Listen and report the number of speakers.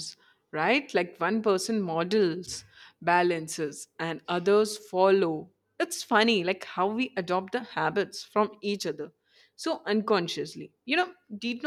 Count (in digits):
1